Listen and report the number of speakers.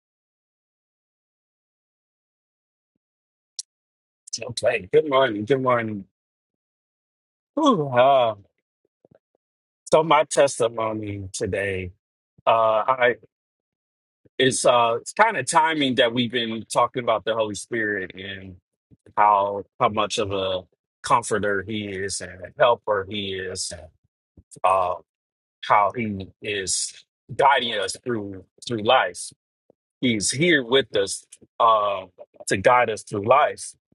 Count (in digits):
1